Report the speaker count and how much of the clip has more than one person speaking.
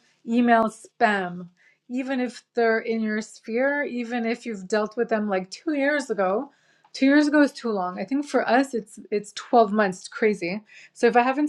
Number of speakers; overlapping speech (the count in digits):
1, no overlap